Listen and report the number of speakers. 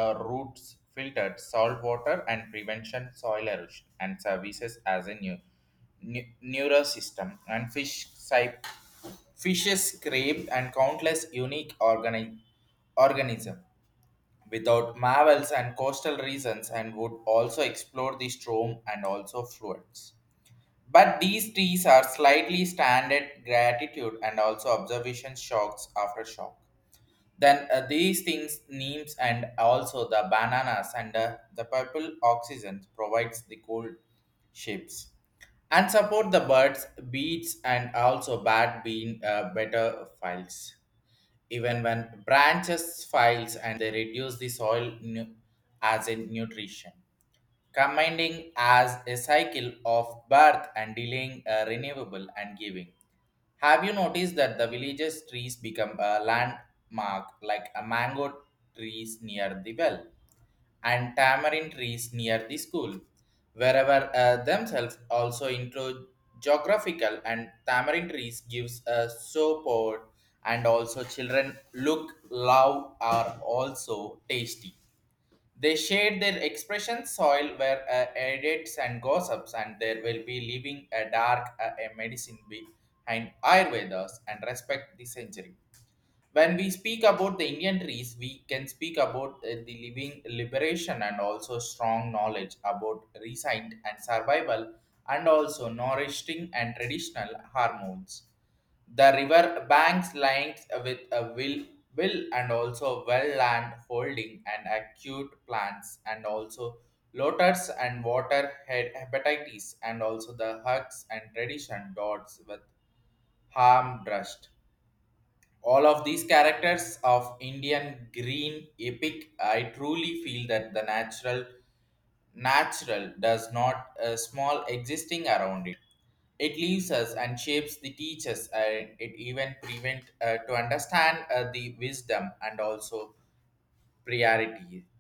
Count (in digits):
1